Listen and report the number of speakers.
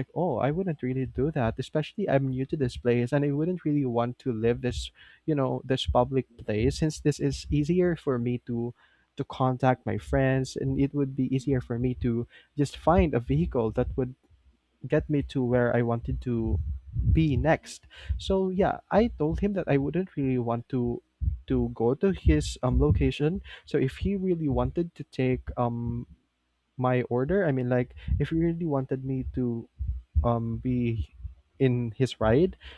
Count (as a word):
one